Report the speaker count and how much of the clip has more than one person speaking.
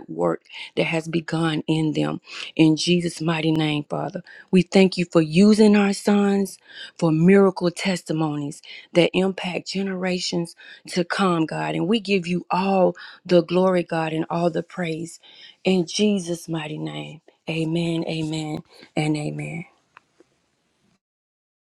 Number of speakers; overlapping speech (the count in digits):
1, no overlap